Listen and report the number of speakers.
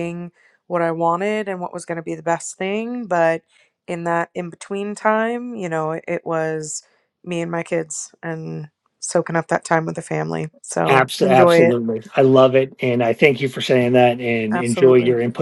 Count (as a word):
two